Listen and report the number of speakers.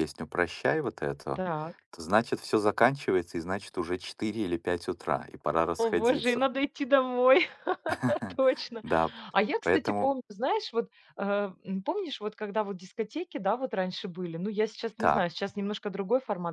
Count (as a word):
two